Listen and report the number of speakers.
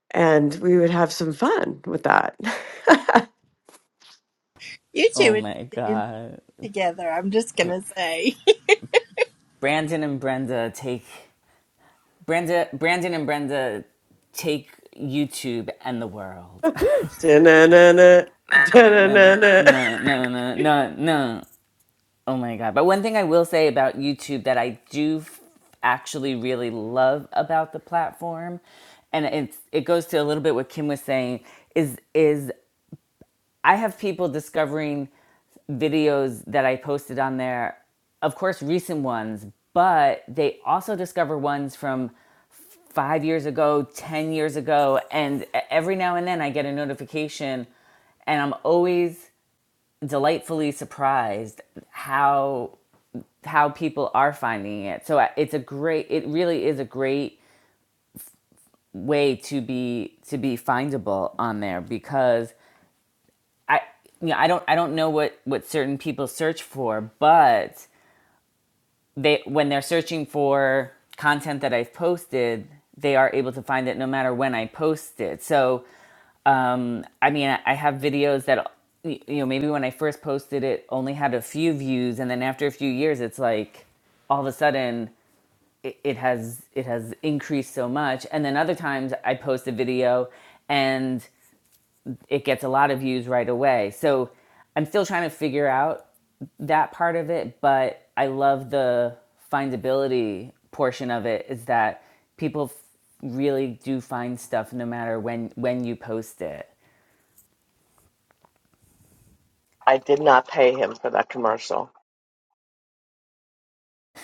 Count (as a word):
four